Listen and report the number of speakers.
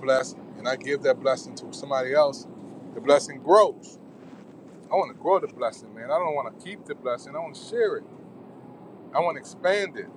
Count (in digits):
1